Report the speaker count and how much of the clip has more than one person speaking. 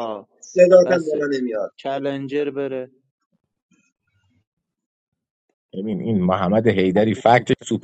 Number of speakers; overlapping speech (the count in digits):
3, about 5%